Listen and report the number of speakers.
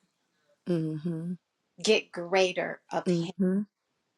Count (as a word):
two